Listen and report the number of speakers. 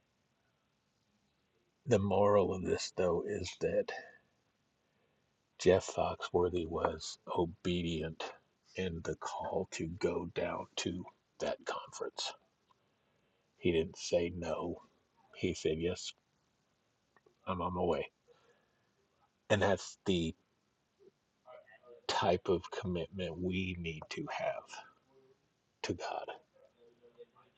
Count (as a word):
one